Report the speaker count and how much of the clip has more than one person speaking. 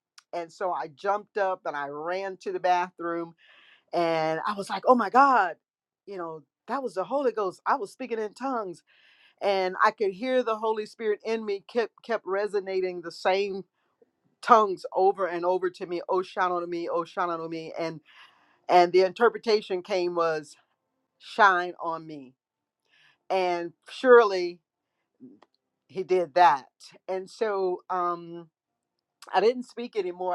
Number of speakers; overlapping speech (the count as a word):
one, no overlap